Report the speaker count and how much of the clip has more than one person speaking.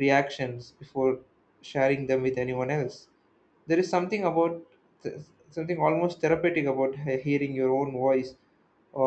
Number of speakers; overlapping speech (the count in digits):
1, no overlap